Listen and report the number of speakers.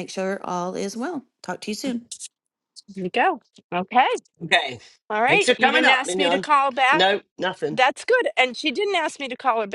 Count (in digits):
3